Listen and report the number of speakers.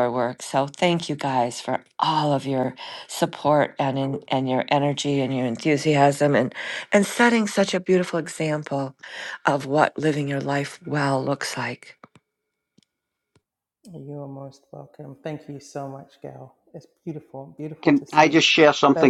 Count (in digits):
3